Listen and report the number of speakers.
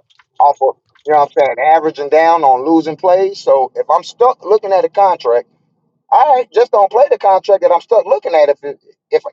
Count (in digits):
1